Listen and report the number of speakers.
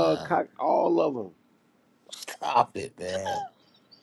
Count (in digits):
2